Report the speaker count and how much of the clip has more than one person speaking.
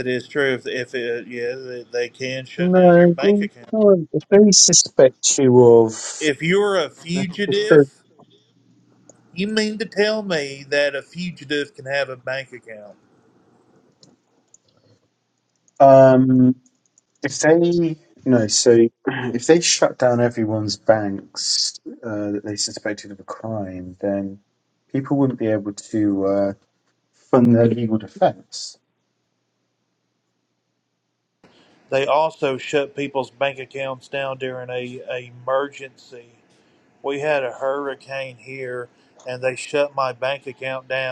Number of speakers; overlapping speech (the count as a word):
two, about 3%